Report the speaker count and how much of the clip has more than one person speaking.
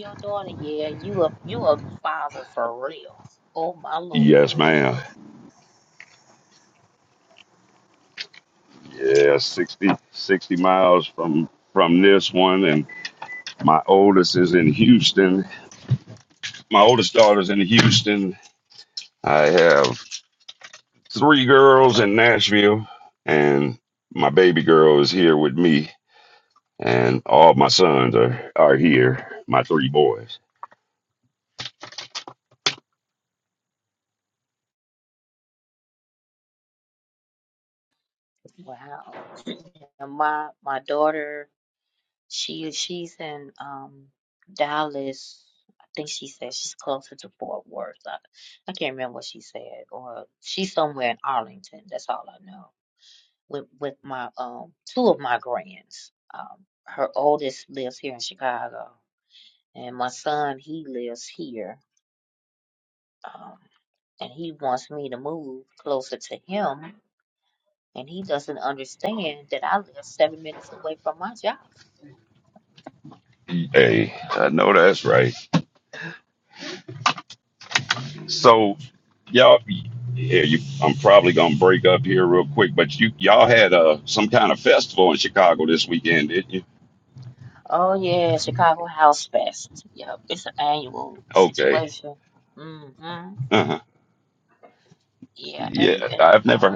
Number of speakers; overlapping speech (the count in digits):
2, about 2%